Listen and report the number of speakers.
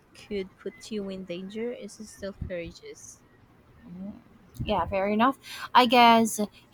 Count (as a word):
two